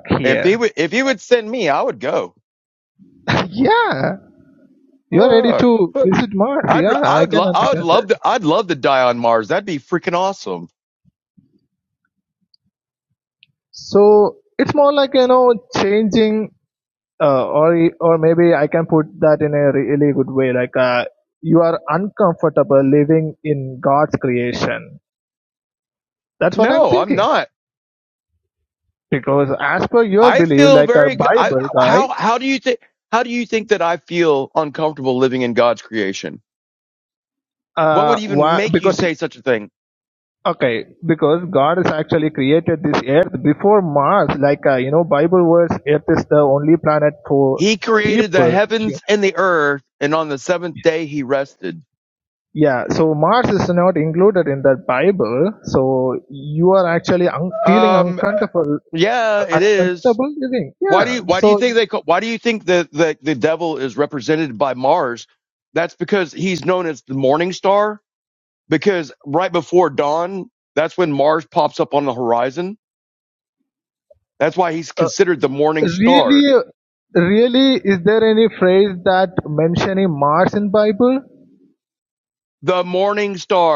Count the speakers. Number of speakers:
2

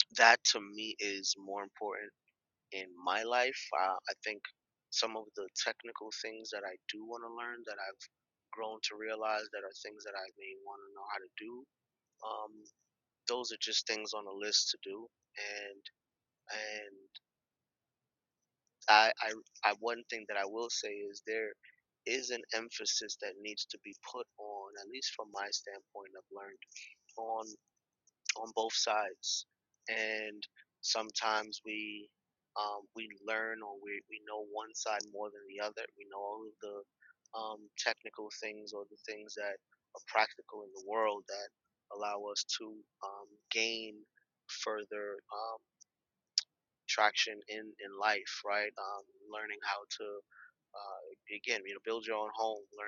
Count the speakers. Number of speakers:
1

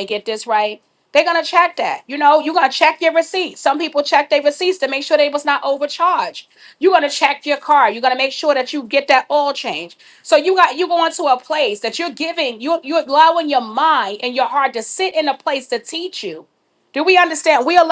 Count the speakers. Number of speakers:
1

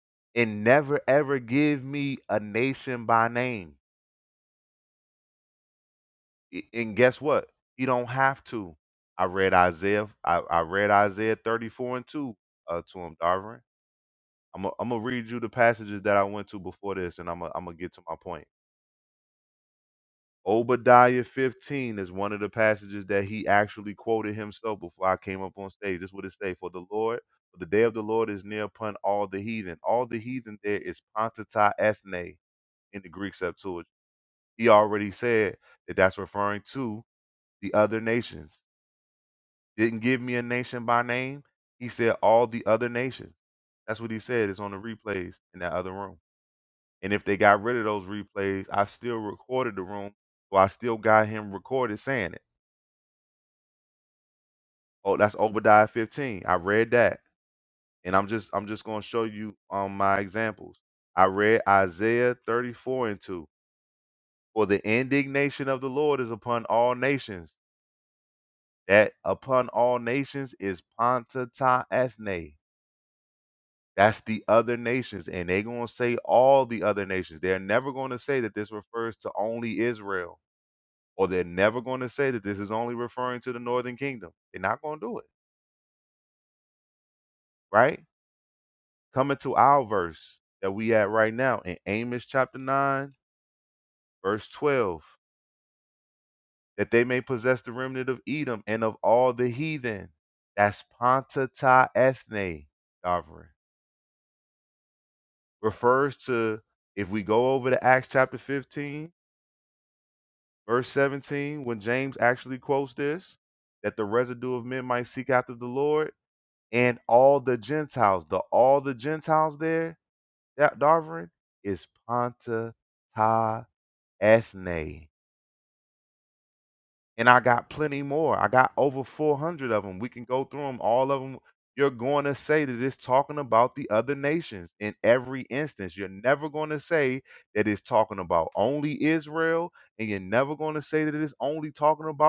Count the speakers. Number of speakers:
1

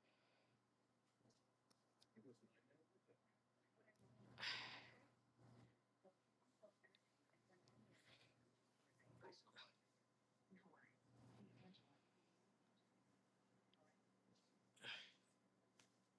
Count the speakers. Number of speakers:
0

